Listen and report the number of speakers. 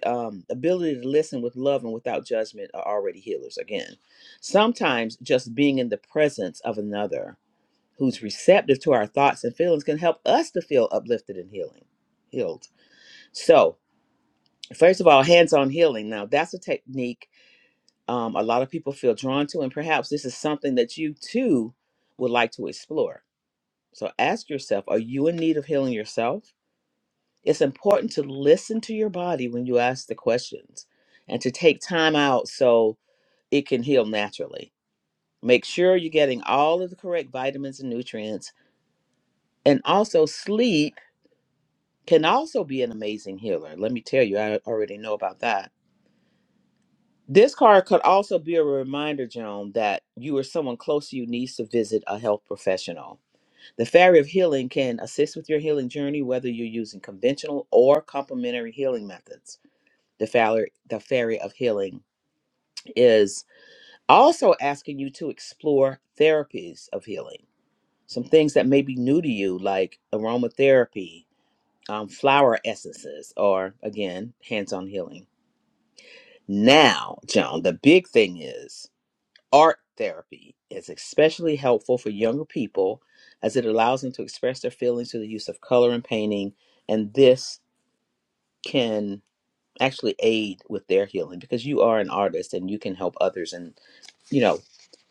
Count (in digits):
1